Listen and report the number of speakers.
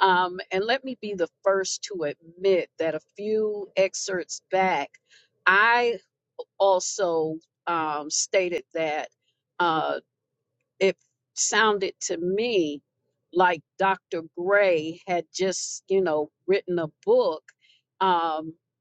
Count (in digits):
1